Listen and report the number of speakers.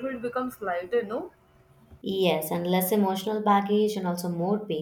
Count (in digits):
2